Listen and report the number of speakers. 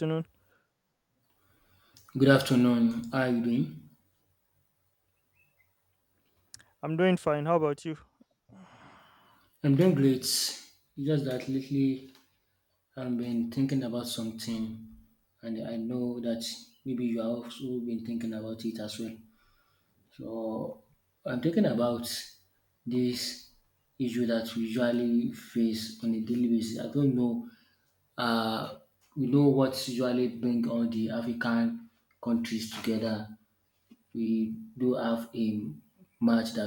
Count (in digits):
2